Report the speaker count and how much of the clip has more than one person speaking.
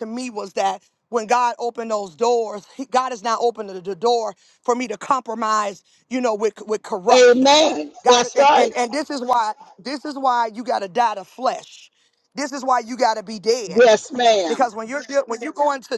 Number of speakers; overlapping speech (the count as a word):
two, about 8%